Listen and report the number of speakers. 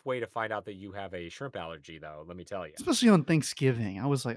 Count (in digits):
2